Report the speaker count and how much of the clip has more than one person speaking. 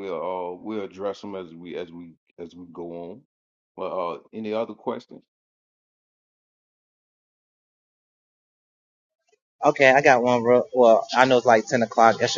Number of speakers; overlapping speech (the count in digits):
2, no overlap